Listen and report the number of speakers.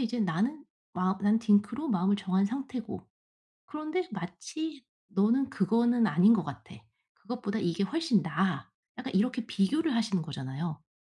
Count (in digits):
1